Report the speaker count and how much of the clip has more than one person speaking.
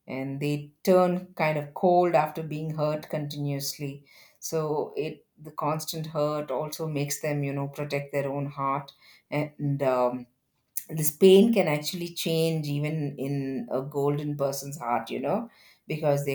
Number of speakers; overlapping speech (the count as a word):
one, no overlap